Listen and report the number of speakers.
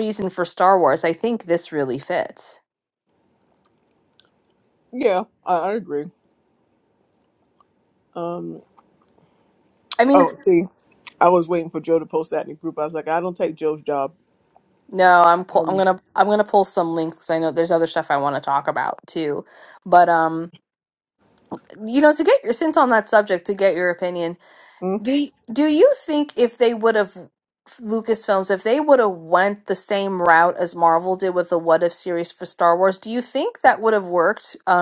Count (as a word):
two